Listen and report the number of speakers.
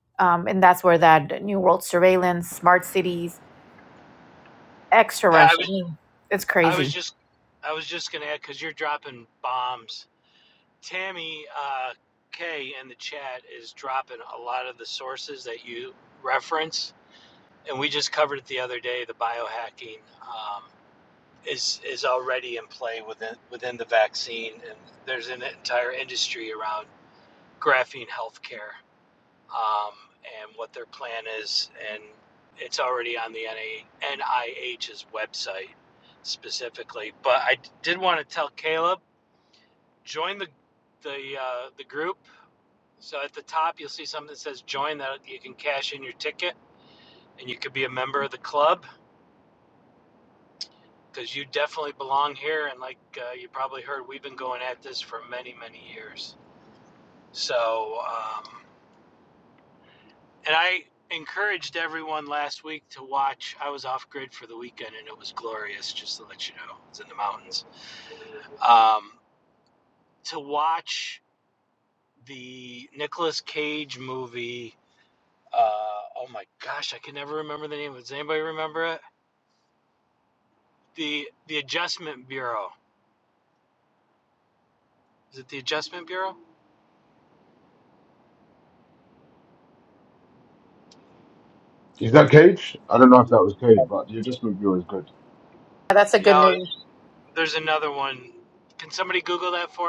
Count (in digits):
3